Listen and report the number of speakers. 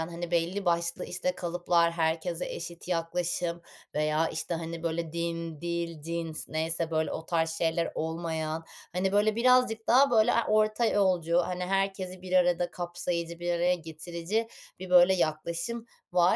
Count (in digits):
1